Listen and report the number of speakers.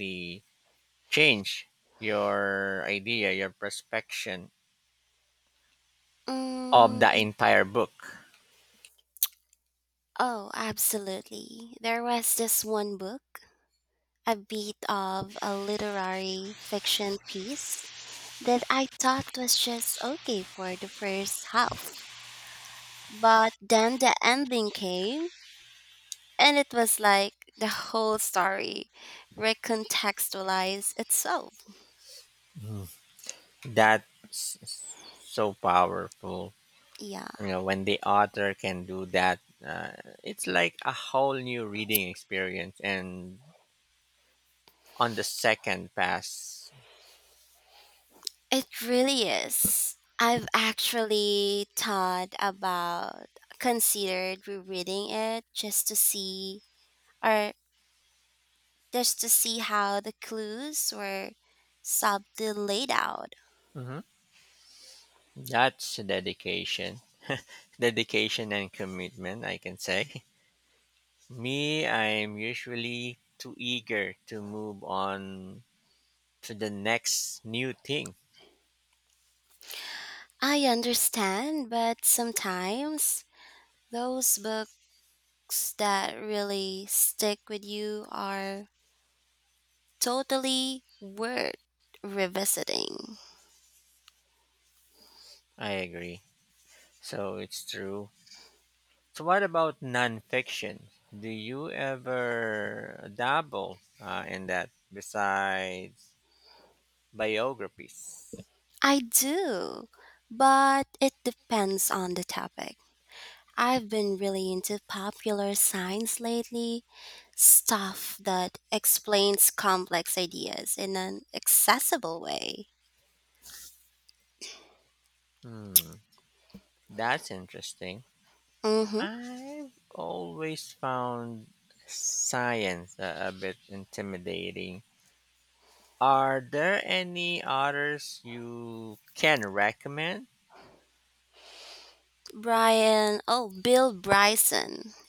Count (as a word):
two